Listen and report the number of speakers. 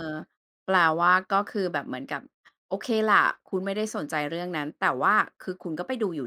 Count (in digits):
1